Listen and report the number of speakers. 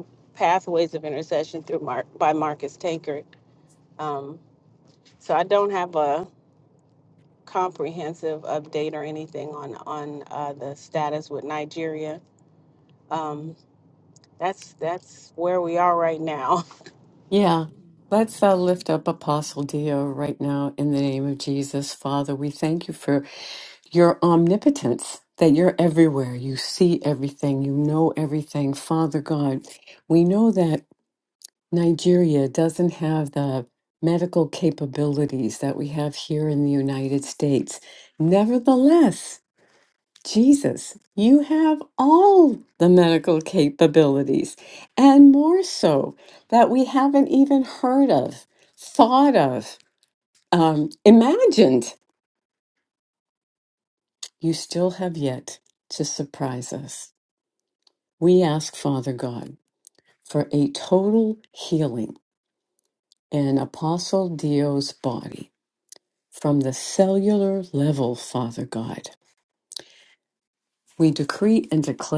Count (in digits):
2